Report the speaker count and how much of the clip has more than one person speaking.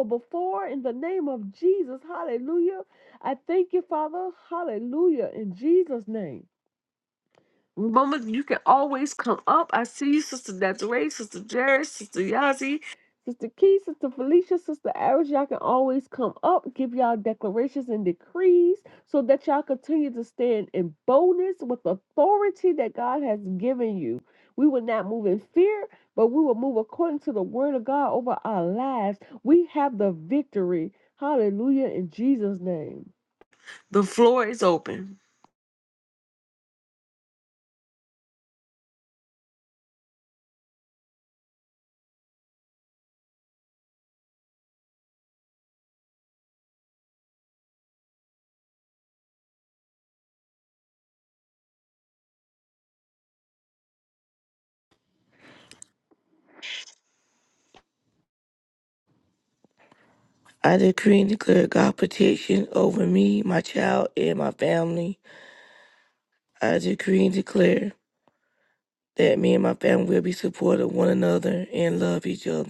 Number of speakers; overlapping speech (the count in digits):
2, no overlap